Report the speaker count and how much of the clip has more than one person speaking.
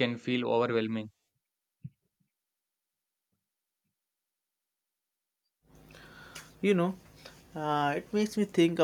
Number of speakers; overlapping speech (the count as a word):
two, no overlap